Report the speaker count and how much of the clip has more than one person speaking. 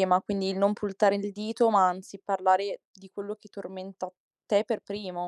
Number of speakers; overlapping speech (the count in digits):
1, no overlap